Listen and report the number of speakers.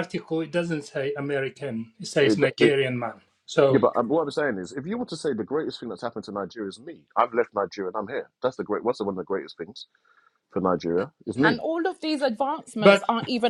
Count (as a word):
three